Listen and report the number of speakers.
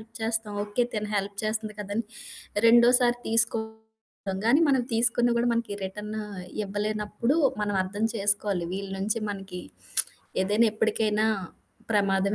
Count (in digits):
1